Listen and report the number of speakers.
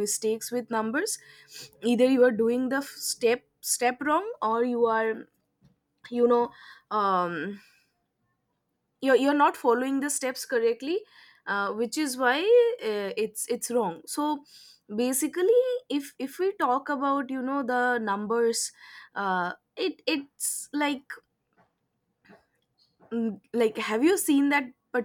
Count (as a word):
one